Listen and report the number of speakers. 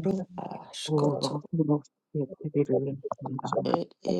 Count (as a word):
two